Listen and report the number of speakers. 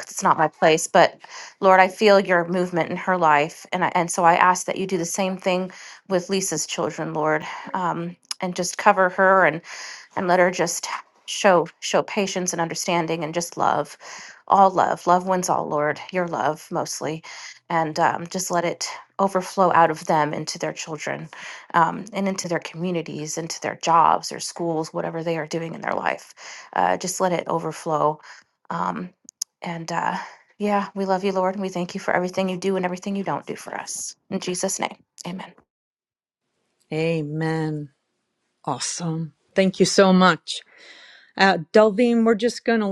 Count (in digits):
2